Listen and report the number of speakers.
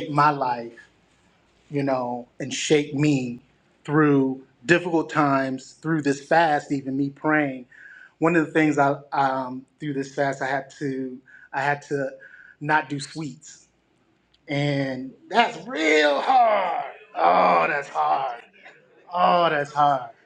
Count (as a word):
one